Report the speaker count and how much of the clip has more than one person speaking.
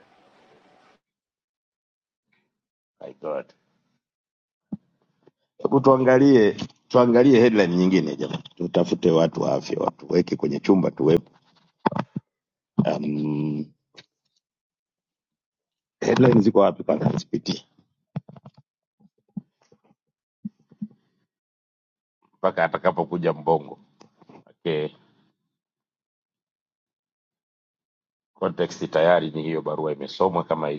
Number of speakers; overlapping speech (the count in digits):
1, no overlap